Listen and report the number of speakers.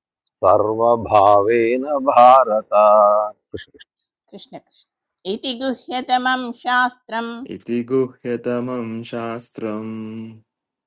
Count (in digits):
3